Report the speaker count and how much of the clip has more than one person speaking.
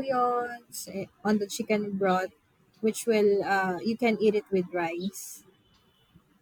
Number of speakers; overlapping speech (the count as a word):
one, no overlap